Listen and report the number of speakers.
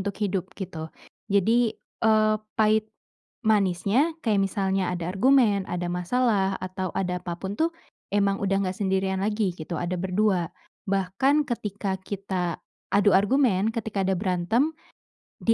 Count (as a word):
one